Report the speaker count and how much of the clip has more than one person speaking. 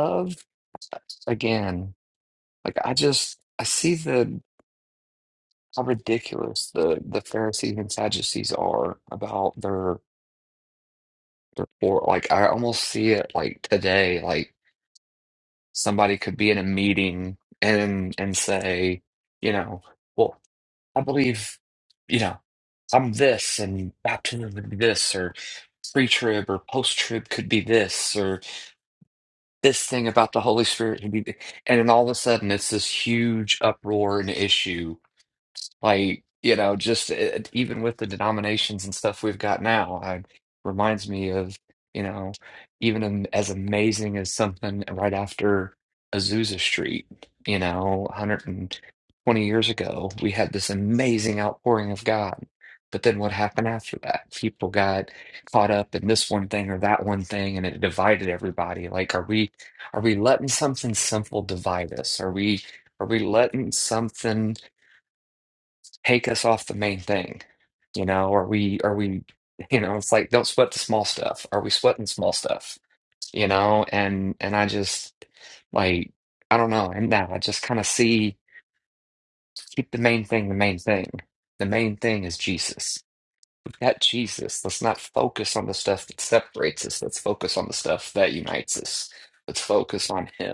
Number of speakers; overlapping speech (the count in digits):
1, no overlap